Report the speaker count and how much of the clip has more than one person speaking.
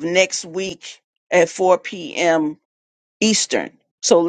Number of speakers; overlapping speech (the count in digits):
1, no overlap